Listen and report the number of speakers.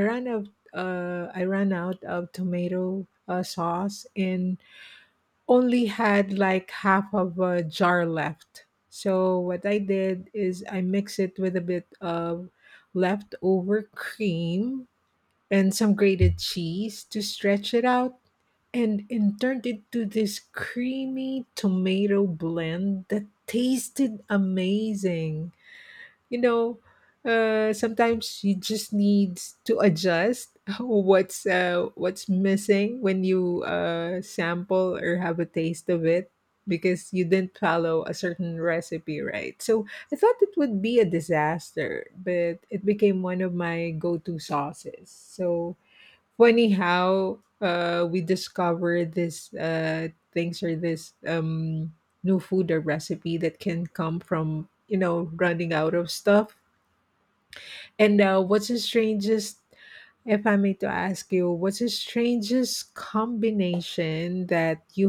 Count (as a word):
one